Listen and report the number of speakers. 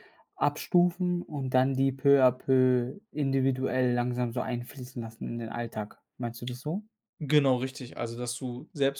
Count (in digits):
2